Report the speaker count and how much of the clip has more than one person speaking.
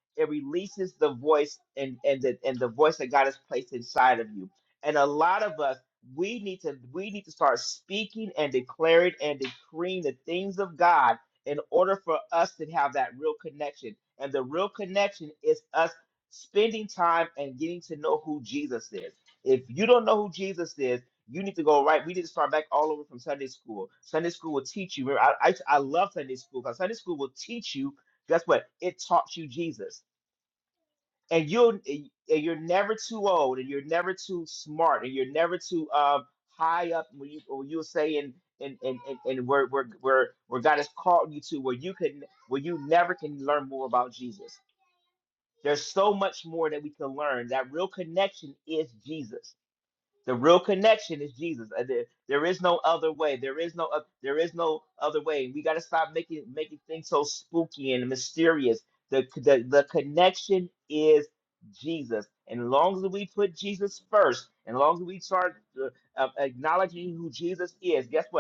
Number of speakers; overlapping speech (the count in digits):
1, no overlap